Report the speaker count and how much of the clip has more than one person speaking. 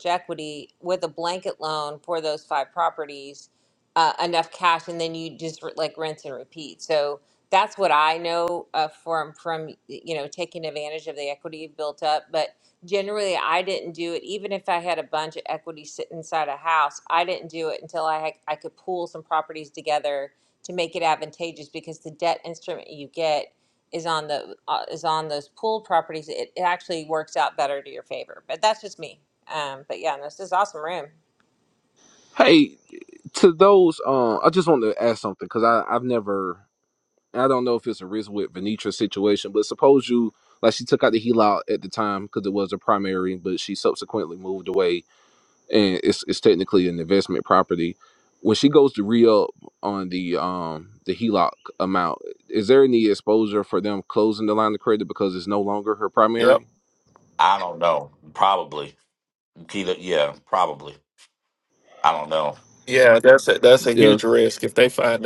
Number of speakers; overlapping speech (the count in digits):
4, about 1%